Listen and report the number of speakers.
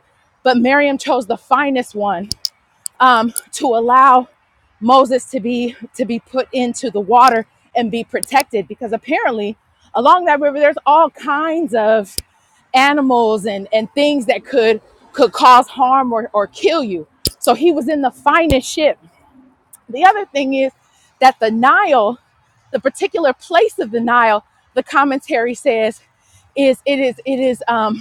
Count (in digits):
1